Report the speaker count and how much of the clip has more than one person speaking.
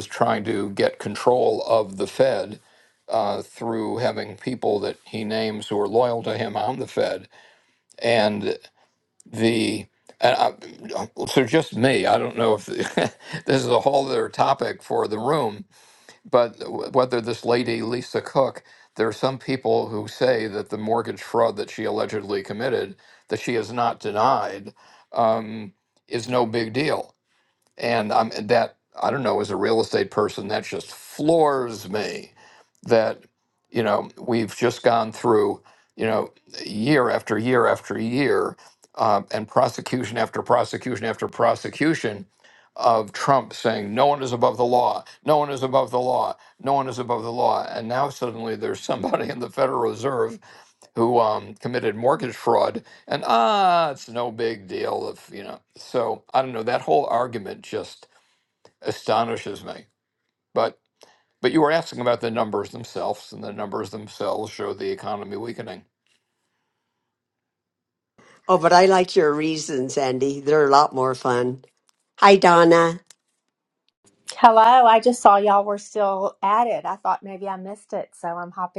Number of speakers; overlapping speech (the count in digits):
3, no overlap